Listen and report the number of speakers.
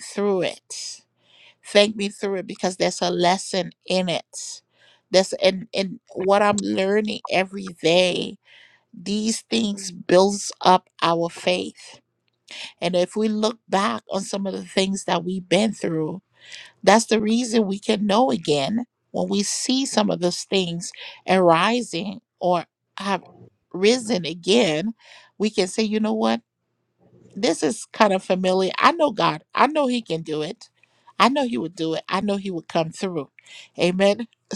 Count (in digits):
1